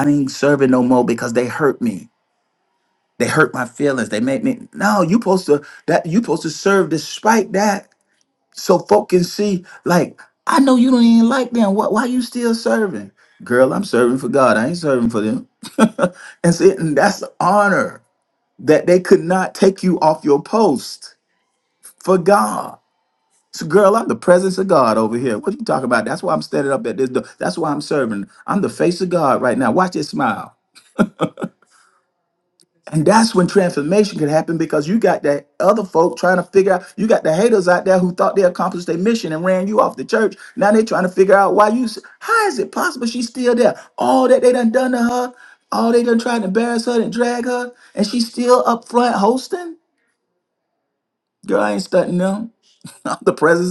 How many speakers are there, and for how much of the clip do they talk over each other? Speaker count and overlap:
1, no overlap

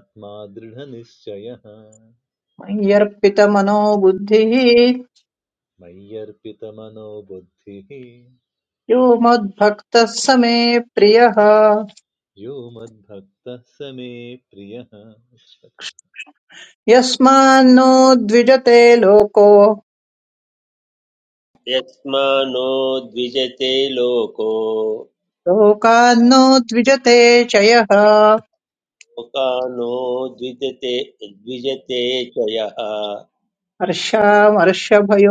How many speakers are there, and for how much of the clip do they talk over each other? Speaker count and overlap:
3, no overlap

